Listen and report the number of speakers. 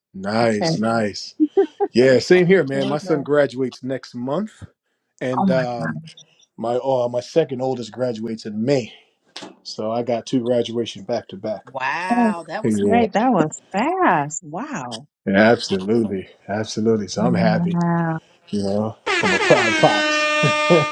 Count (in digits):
3